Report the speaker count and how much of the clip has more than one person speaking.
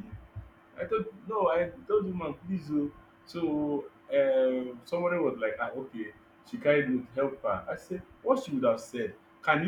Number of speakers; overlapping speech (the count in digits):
1, no overlap